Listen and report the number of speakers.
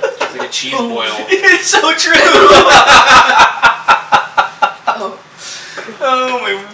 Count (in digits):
3